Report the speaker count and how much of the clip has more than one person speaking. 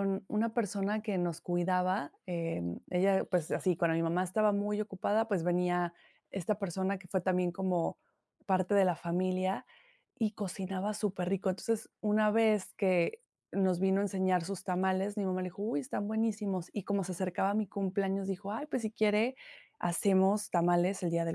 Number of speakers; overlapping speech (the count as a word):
one, no overlap